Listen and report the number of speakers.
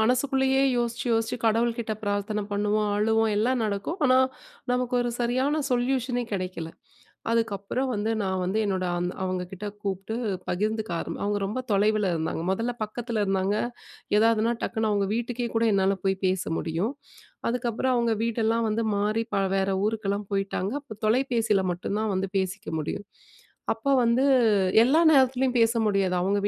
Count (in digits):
1